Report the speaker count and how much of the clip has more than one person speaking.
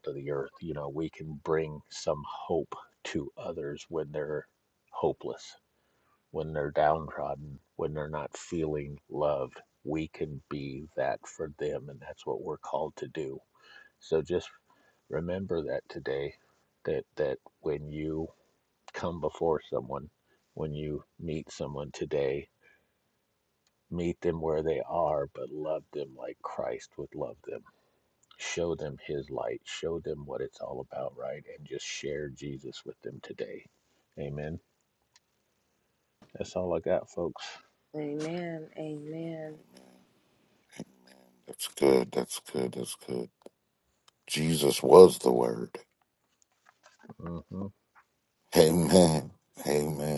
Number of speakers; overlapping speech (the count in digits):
3, no overlap